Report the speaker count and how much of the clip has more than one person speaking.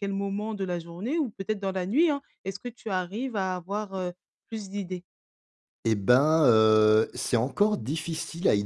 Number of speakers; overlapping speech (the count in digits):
2, no overlap